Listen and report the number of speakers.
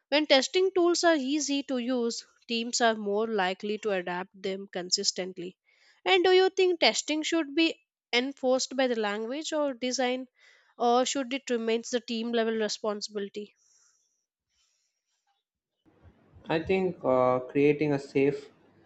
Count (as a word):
two